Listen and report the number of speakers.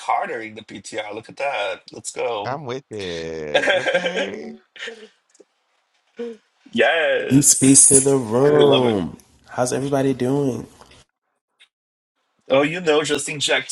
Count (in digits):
3